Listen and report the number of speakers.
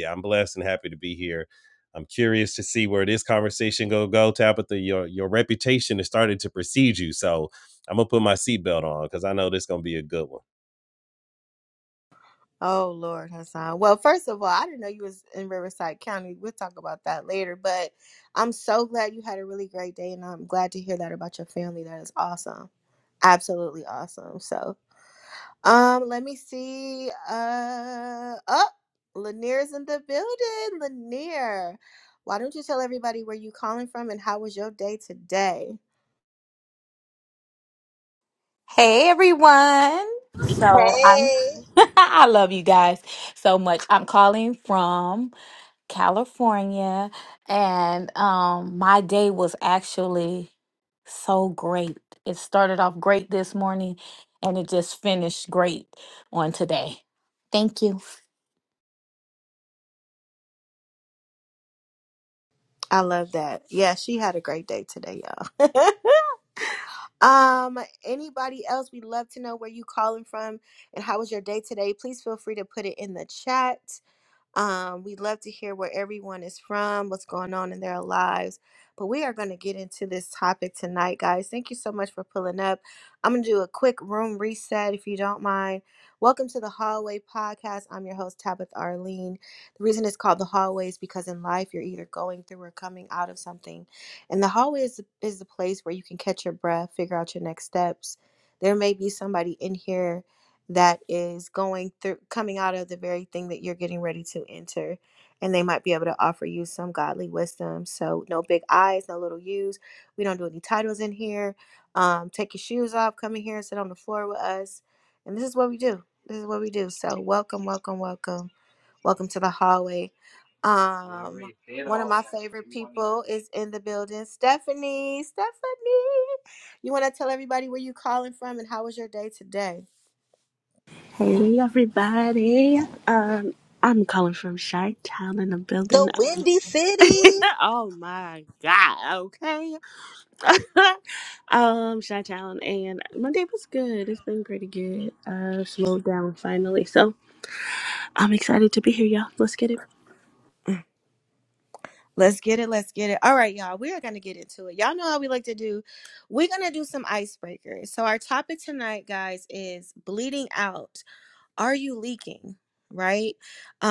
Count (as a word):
five